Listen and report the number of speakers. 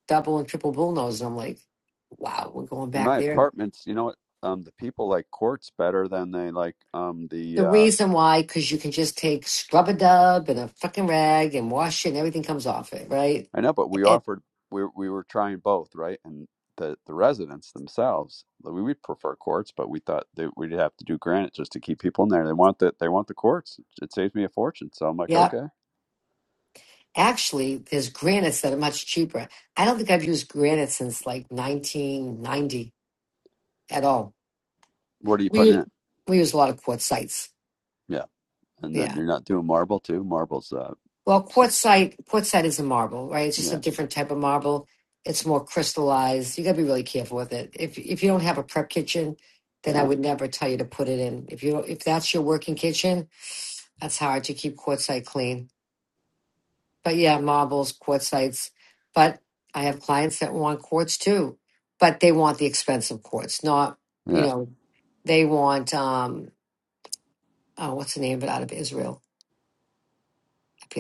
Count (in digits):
2